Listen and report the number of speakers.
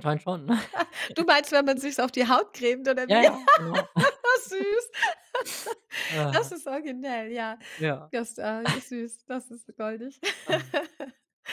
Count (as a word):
two